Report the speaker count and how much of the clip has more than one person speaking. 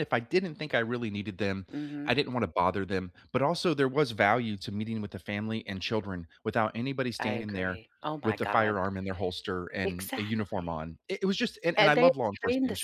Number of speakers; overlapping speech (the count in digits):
2, about 24%